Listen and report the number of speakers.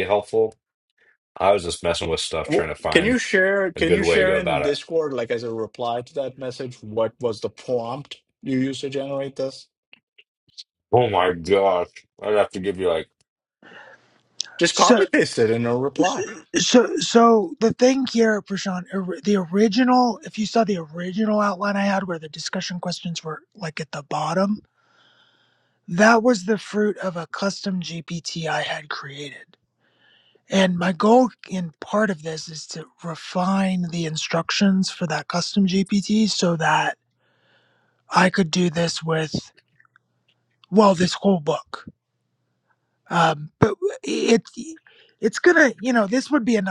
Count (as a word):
three